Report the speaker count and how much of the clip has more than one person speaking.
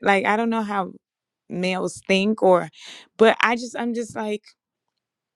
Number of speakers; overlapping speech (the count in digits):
1, no overlap